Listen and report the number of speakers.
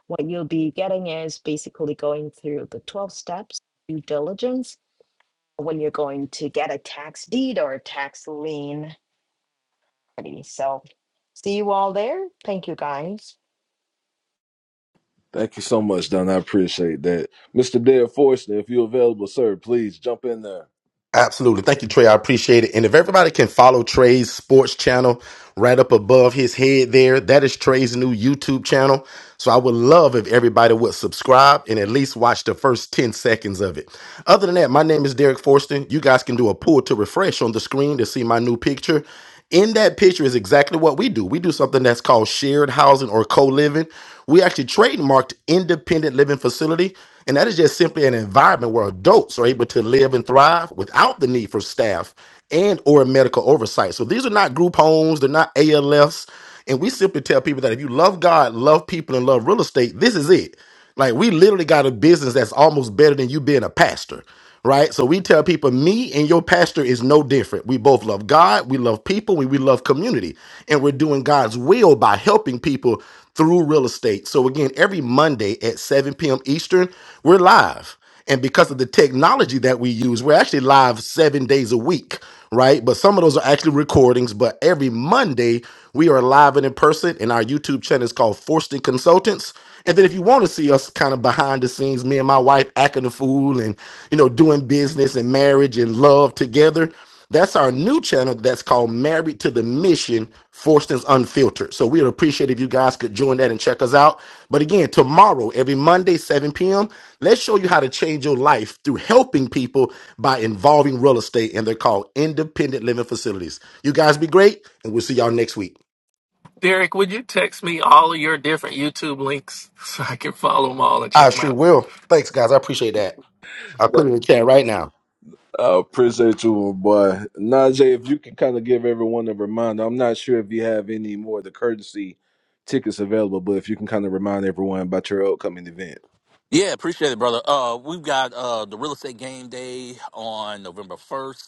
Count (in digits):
5